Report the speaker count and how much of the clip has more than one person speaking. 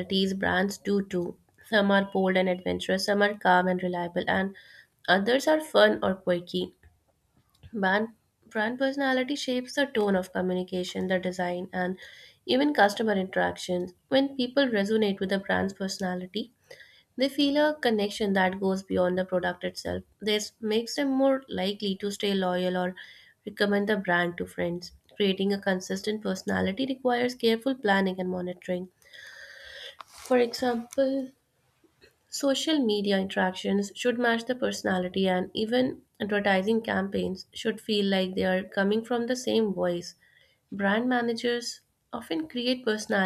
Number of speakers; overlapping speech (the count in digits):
1, no overlap